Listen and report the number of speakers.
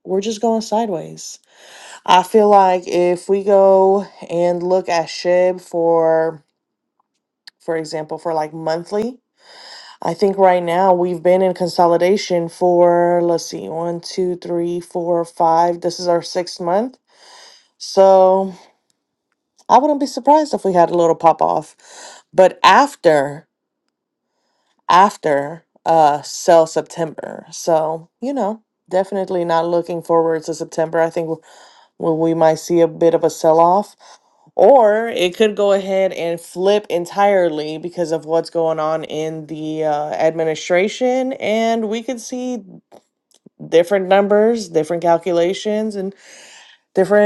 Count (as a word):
one